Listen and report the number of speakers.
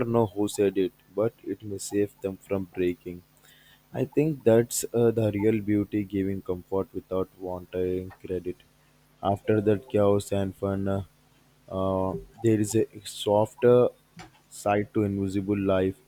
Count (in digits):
1